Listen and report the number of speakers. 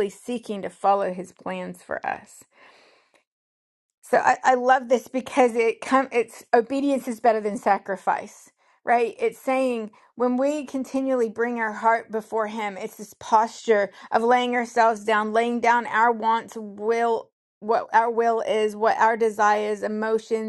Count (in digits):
1